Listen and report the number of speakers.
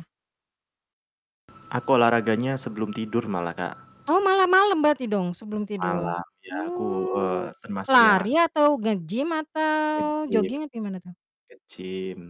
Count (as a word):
two